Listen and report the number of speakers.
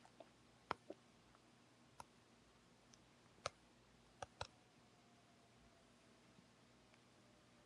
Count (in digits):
0